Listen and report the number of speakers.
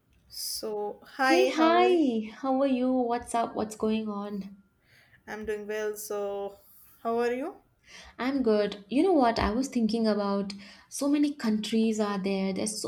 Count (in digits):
2